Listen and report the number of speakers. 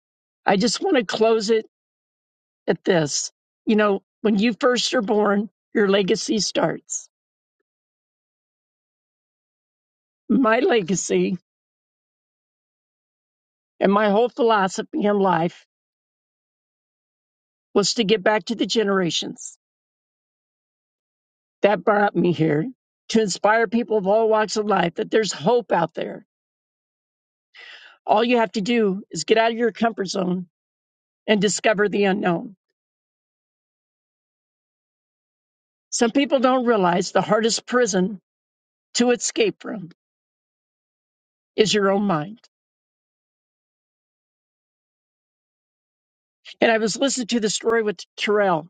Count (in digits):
1